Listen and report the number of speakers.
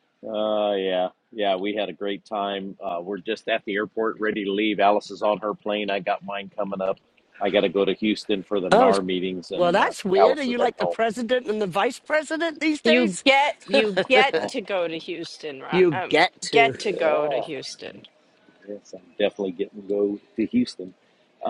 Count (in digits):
3